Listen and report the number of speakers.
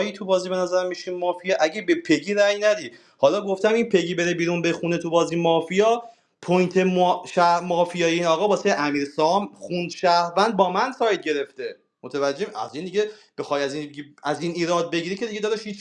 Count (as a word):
one